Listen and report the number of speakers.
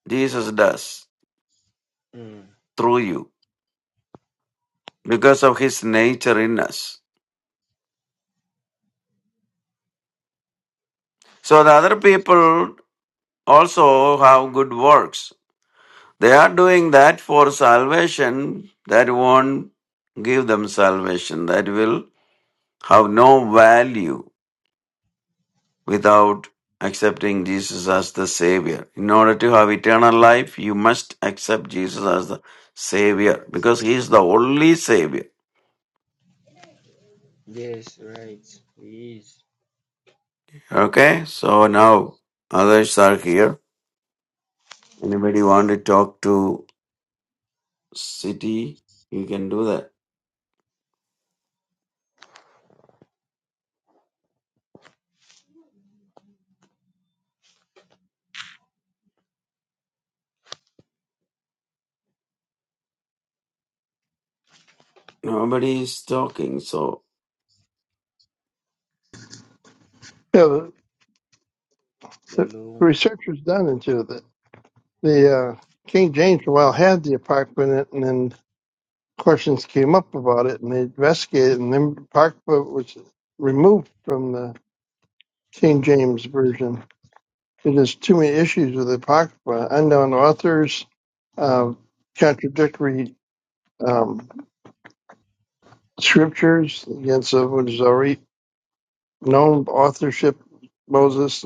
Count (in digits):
3